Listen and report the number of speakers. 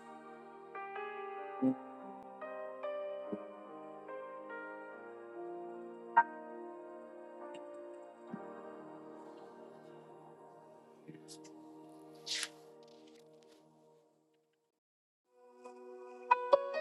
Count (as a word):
zero